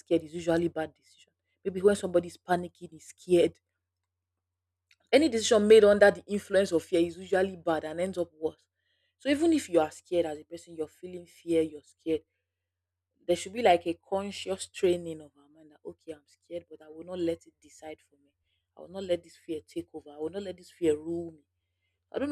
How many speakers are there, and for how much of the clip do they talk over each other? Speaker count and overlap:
1, no overlap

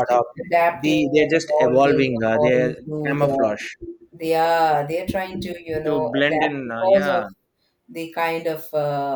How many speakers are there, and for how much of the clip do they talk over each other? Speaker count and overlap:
2, about 48%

